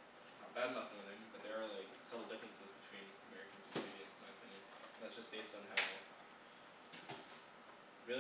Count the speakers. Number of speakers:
1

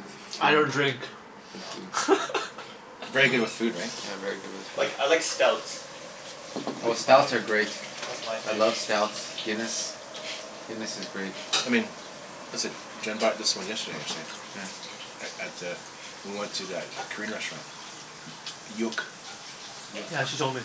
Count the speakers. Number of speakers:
4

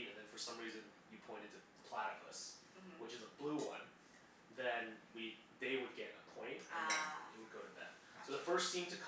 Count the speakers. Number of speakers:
2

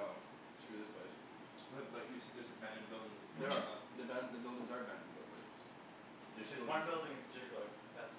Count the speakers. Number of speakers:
3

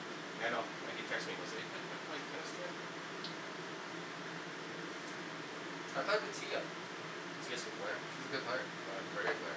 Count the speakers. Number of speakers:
2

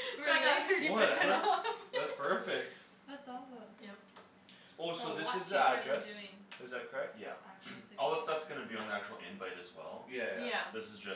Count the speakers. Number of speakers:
4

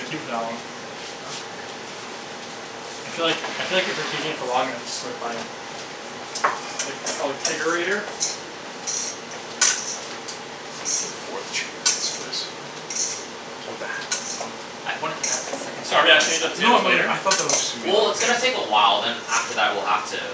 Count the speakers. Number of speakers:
3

